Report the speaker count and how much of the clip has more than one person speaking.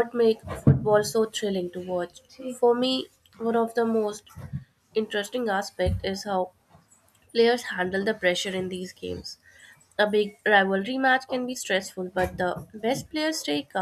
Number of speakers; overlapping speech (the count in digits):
1, no overlap